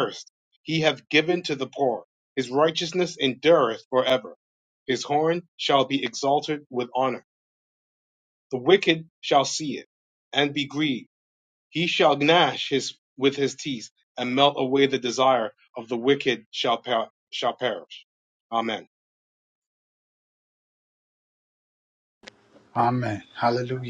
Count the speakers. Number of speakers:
2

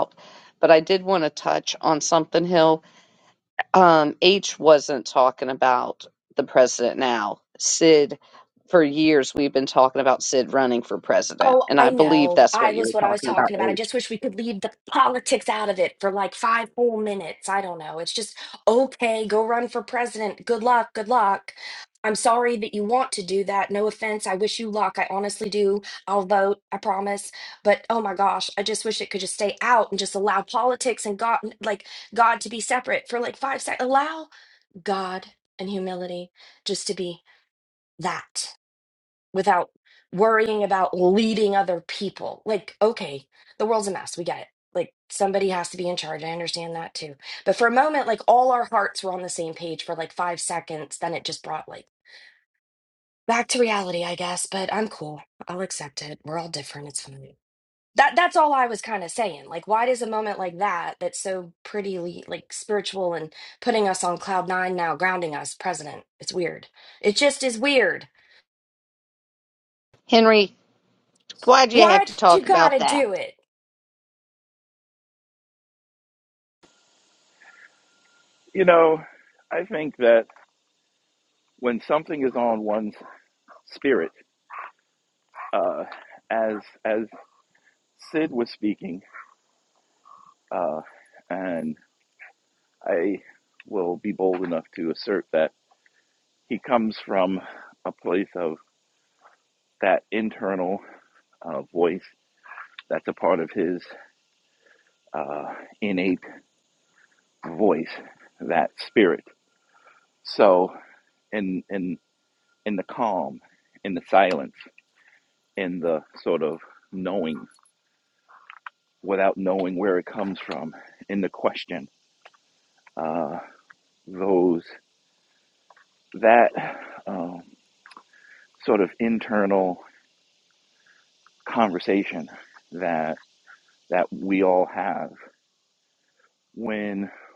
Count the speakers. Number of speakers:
3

